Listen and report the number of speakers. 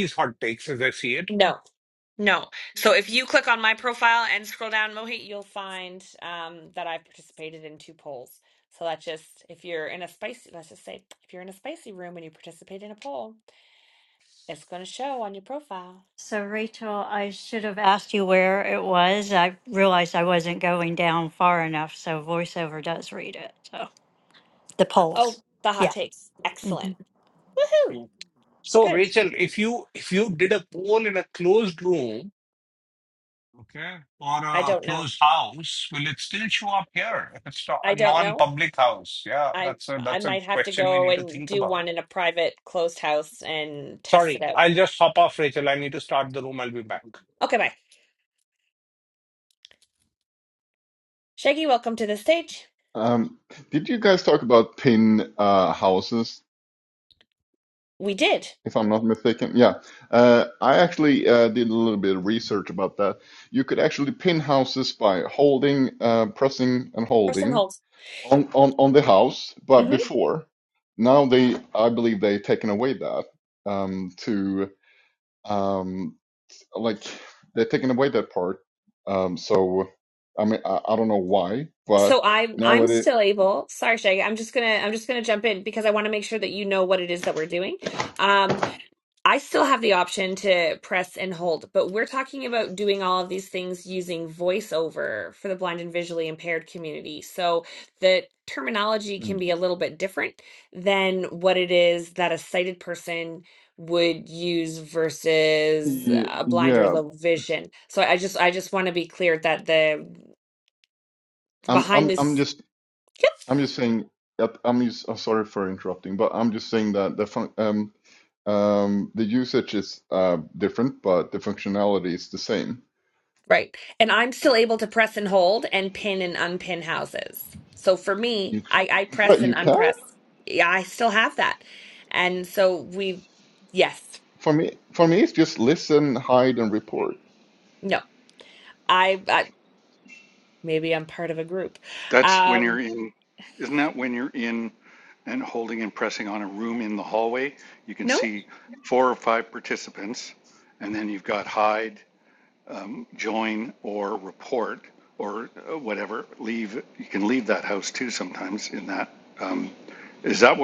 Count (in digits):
5